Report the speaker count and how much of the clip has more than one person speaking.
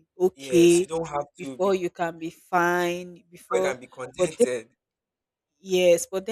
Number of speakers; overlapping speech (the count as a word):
two, about 21%